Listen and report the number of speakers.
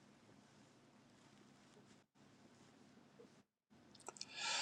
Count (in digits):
0